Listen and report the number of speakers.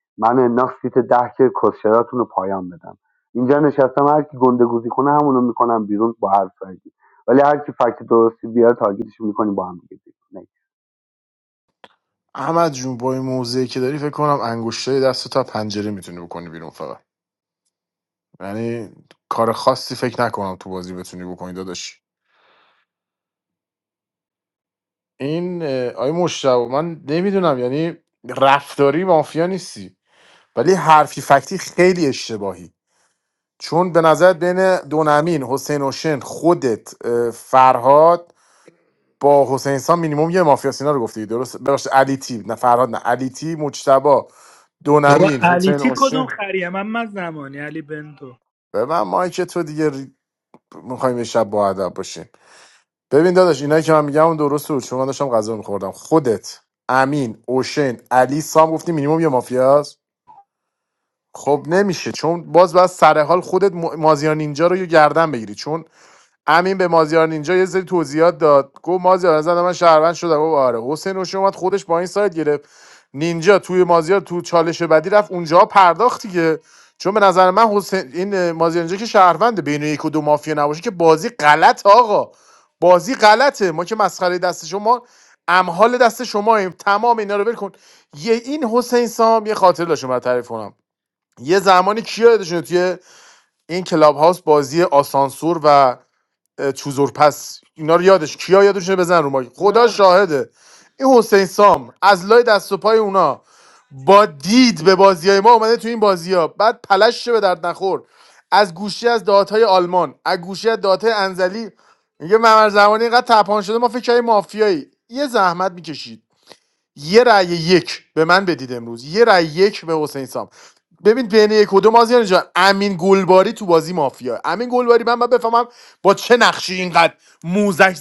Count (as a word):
three